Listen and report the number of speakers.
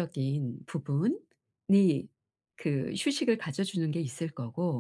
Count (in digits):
1